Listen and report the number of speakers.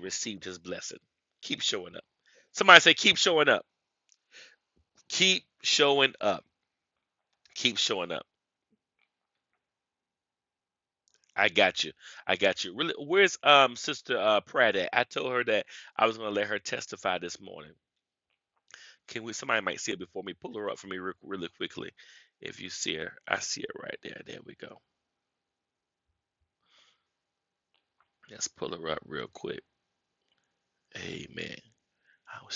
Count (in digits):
1